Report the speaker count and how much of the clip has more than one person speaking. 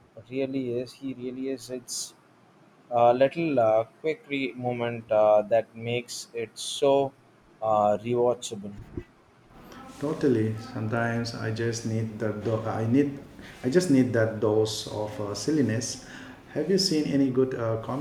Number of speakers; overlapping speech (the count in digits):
2, no overlap